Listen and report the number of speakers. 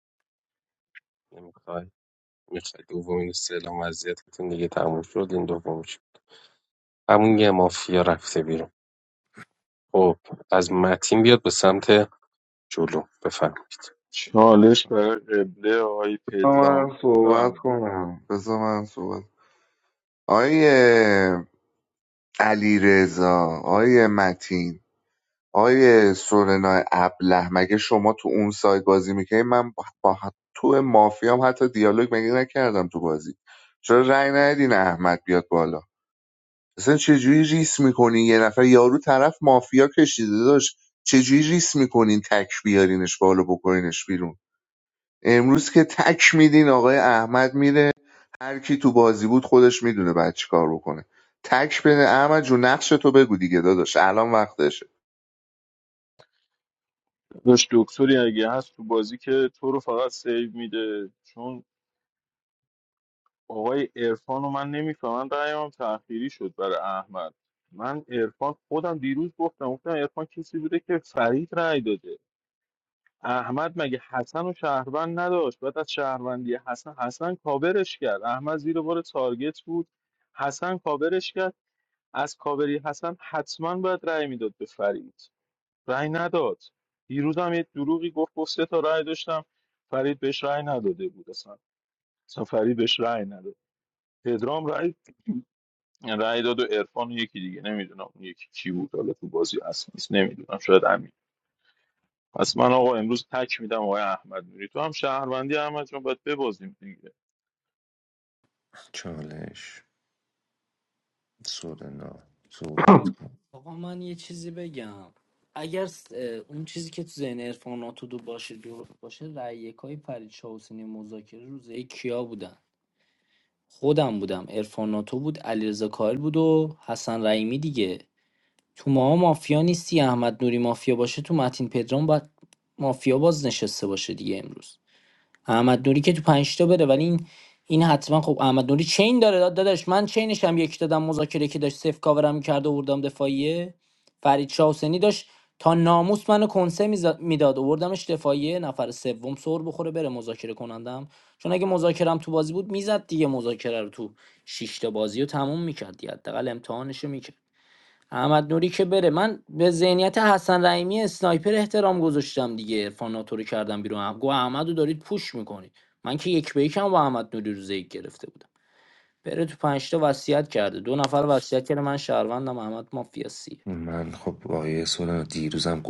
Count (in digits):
5